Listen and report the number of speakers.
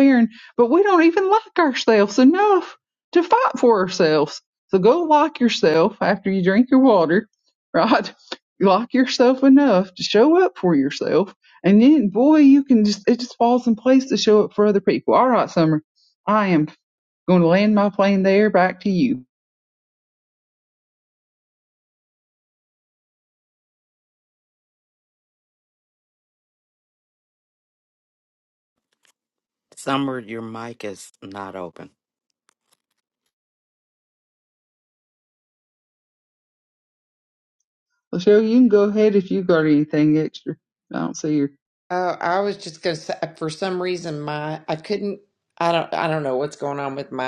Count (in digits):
3